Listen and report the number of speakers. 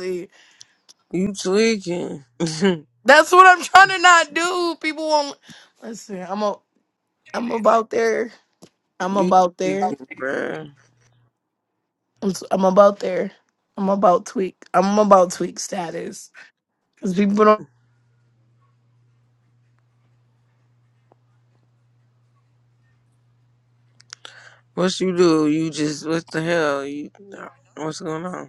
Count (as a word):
two